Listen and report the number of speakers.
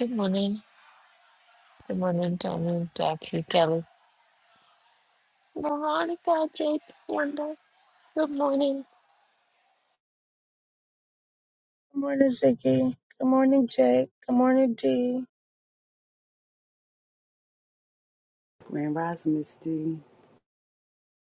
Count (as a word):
three